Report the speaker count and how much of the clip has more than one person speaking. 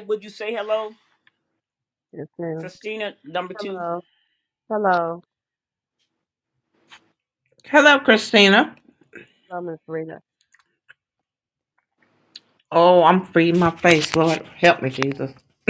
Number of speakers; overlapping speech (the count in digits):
3, about 2%